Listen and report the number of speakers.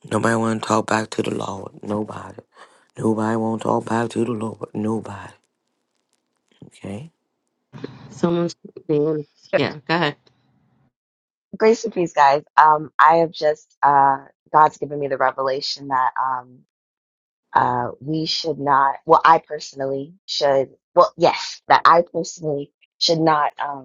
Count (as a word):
three